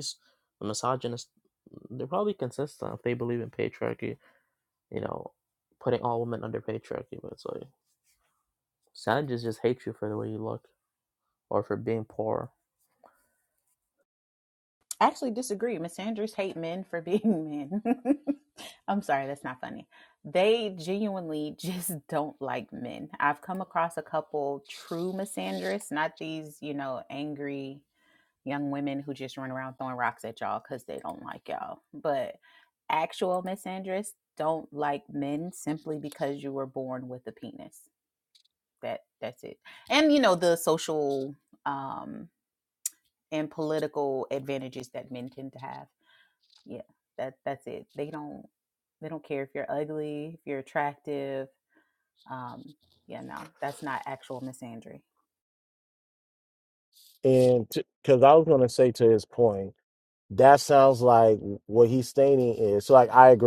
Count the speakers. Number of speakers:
3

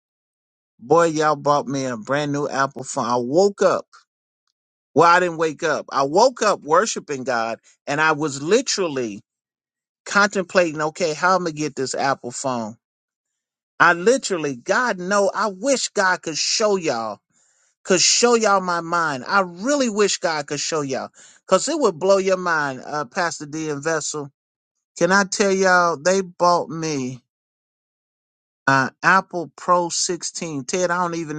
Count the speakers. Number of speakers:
1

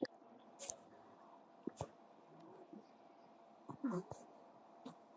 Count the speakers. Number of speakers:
0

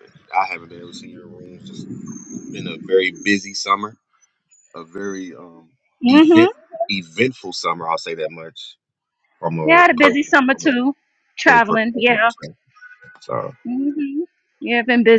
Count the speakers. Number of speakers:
2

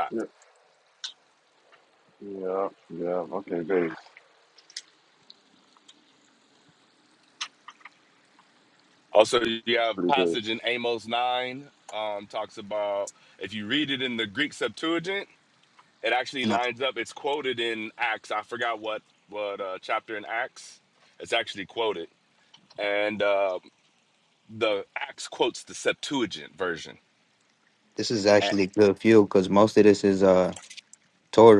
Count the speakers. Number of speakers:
3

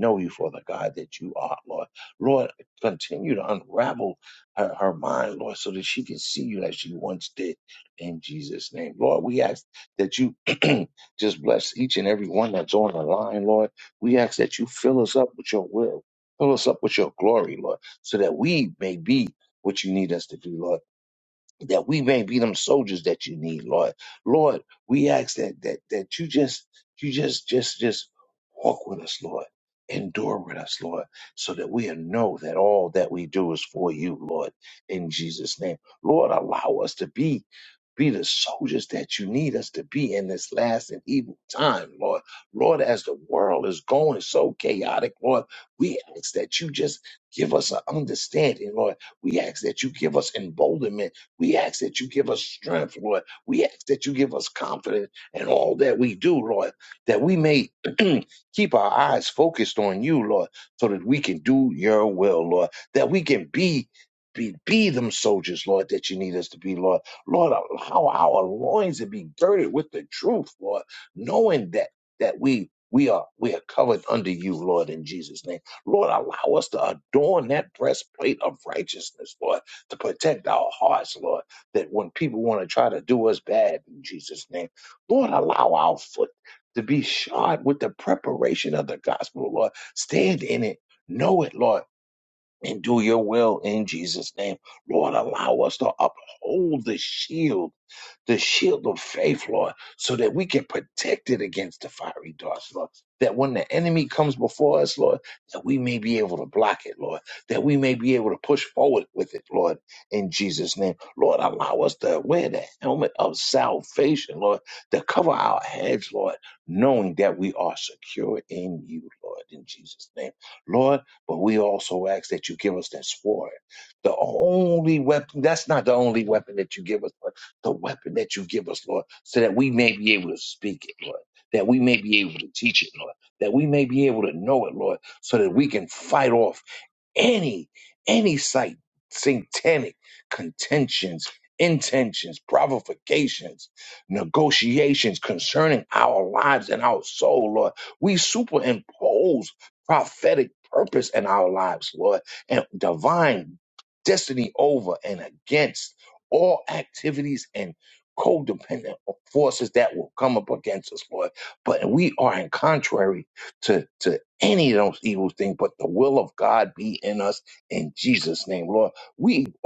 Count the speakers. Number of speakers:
1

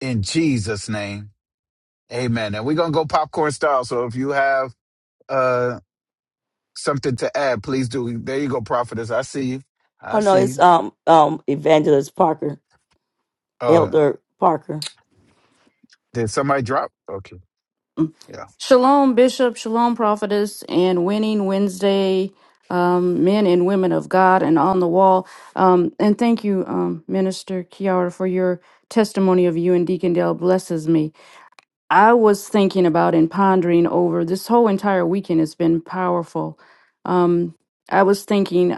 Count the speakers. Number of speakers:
3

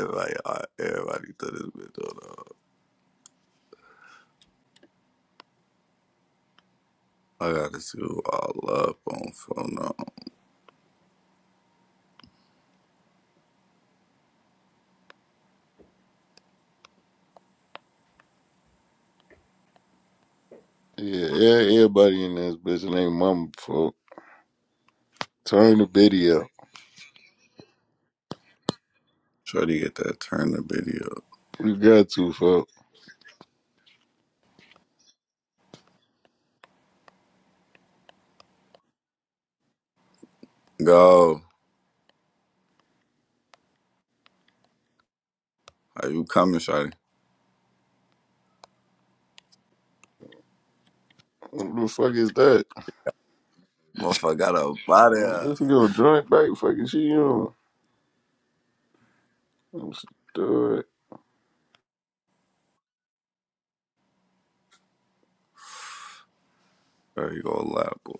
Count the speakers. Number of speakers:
2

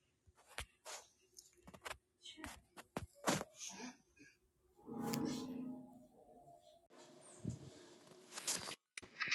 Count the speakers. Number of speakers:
0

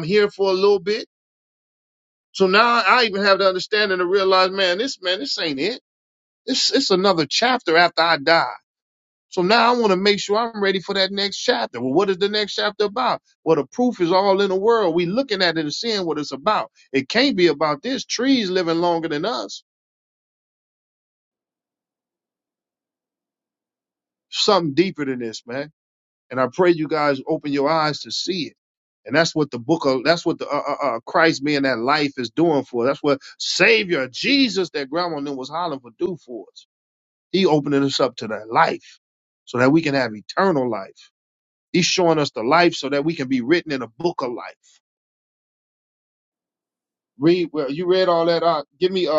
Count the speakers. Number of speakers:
1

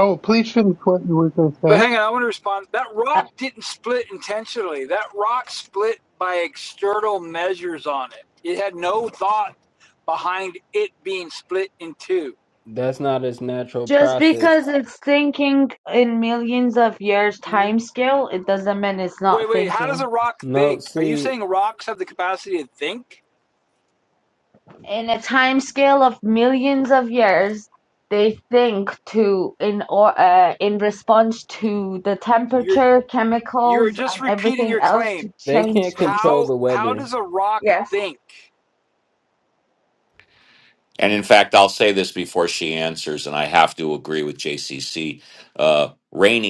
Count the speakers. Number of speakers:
5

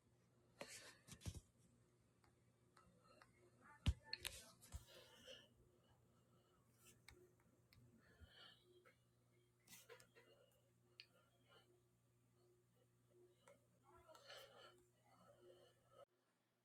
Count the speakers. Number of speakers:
0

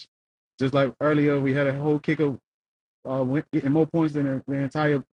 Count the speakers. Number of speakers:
1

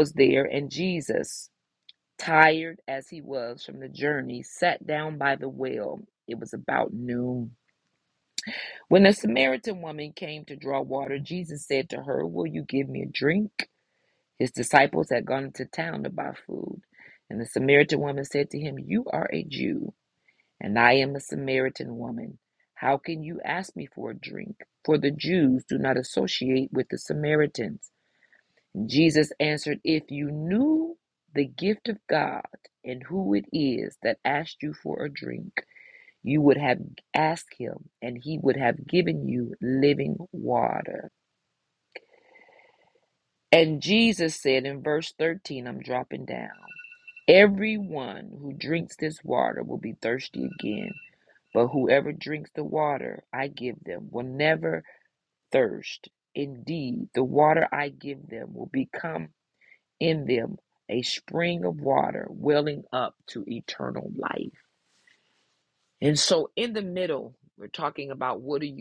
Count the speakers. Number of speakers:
1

